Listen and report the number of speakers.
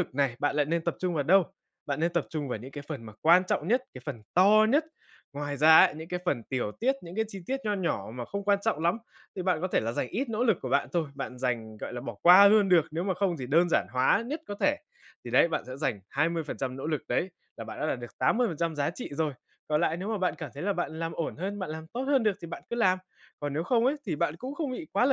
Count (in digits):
1